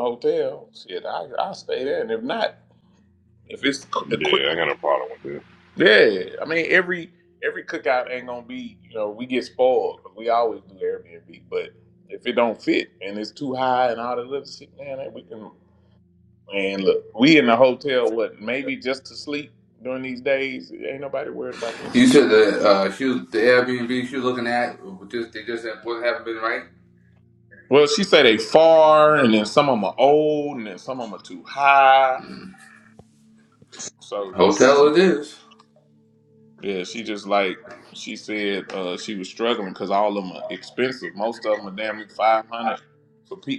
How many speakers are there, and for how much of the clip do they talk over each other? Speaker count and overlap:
3, about 2%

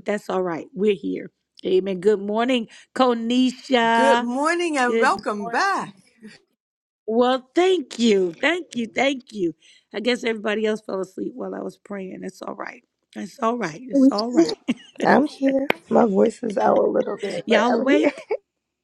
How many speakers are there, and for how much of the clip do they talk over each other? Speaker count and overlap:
3, about 7%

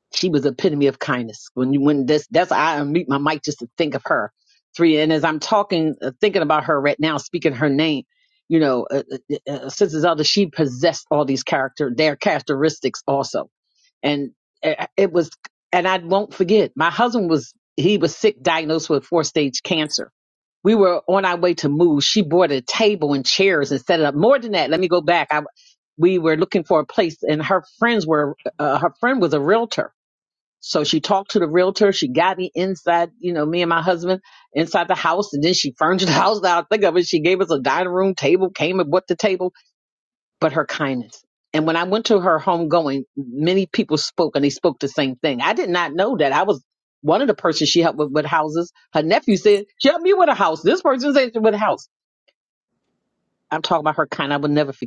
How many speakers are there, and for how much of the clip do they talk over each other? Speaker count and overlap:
1, no overlap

